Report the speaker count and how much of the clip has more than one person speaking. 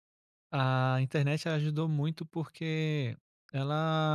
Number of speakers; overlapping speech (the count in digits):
1, no overlap